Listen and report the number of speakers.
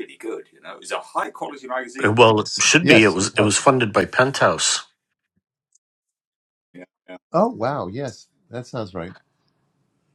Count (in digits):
3